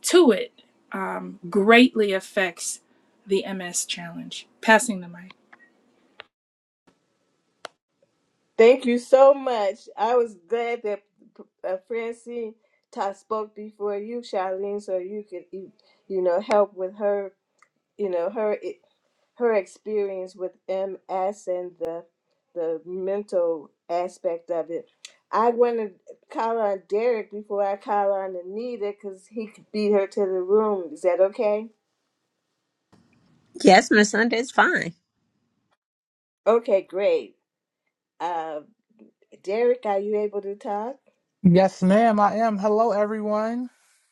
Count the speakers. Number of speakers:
four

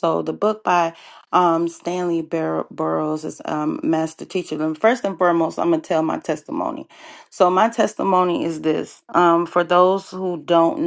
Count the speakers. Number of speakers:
one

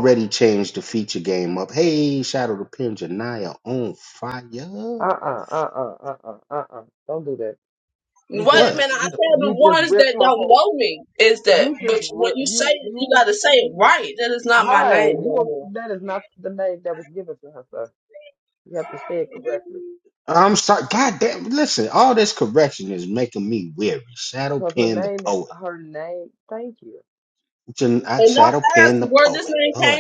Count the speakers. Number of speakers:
three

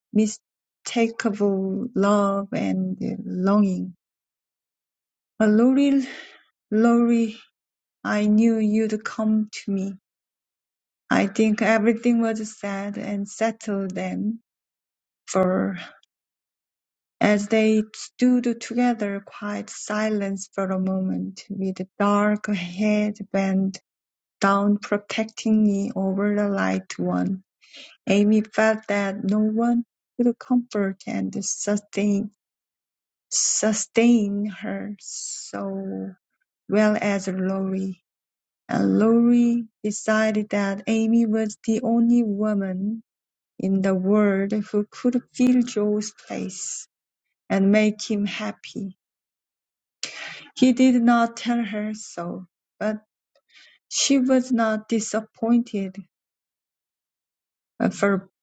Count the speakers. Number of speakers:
one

